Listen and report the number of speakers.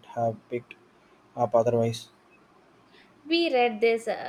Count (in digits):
2